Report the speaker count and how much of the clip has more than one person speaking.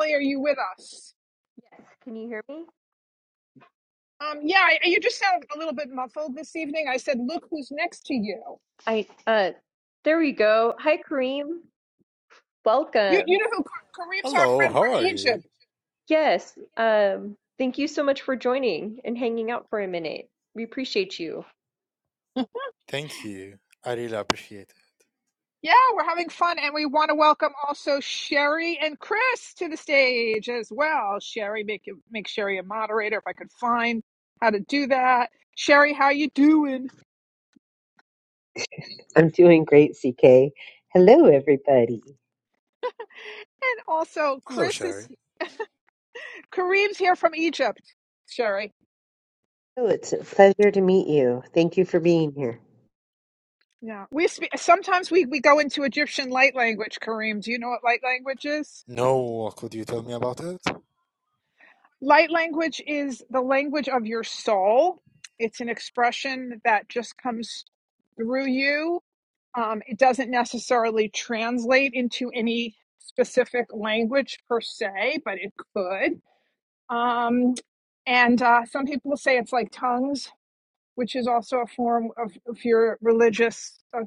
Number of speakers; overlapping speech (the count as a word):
four, about 2%